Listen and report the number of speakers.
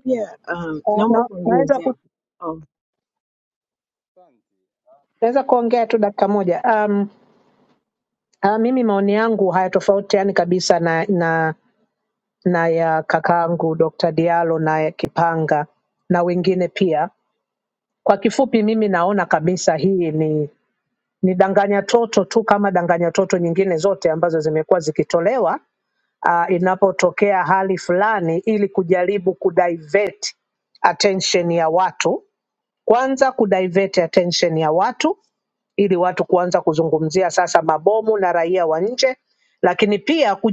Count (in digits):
2